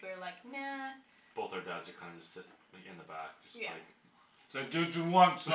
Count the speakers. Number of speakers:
three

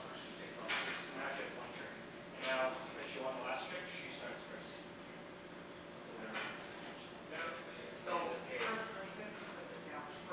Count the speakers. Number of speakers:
two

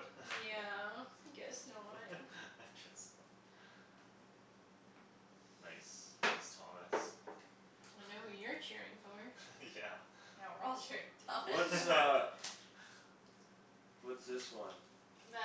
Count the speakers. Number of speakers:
four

